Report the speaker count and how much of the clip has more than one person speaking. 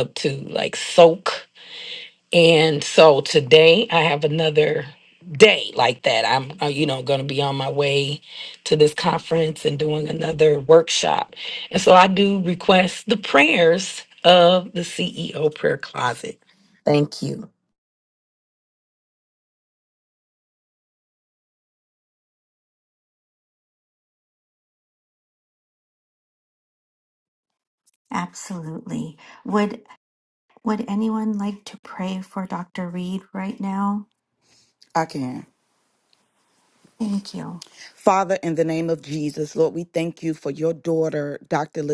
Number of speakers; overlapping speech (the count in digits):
3, no overlap